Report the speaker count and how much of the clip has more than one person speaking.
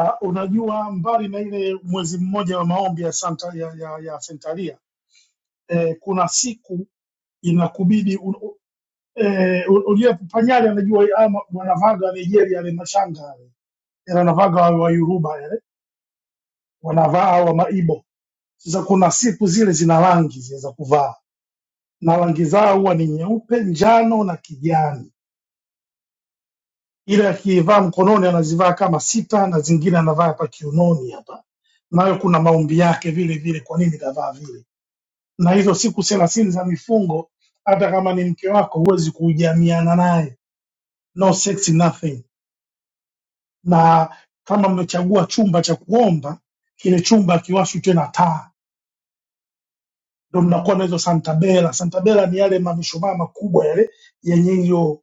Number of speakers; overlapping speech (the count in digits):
1, no overlap